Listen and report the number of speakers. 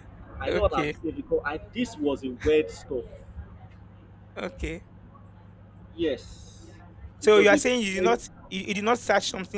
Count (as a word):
two